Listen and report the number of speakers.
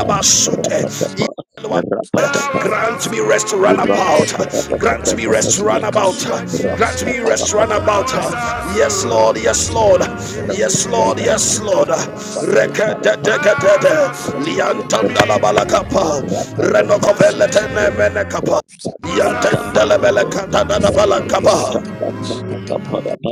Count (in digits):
3